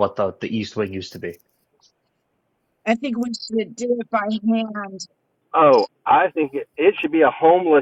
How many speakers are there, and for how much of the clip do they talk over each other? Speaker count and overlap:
3, no overlap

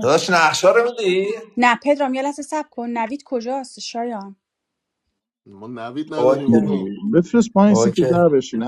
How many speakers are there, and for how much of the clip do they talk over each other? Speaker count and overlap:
4, about 16%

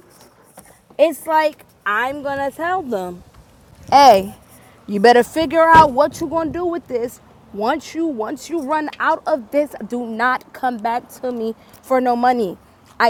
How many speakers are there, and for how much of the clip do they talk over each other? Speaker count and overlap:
1, no overlap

